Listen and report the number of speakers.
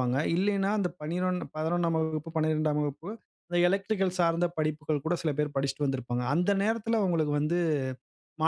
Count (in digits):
1